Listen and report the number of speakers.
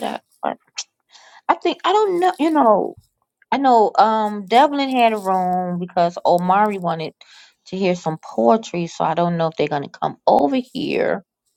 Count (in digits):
1